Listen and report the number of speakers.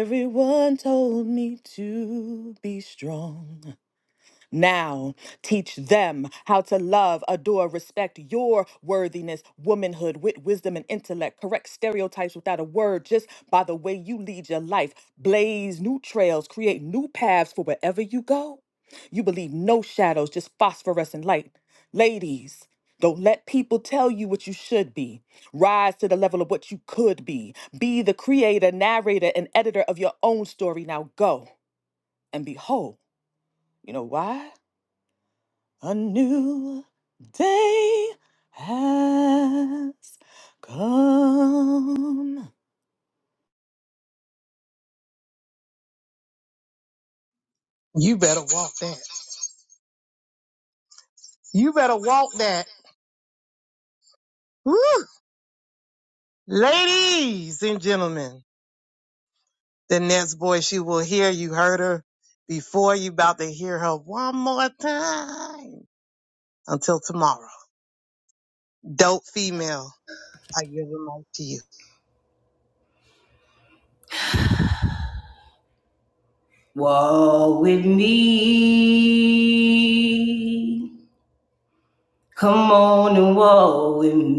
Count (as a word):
three